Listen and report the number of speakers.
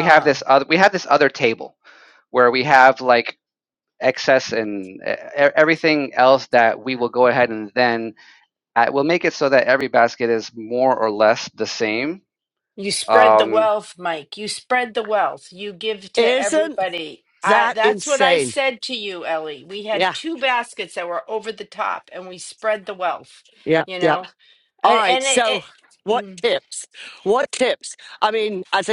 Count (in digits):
3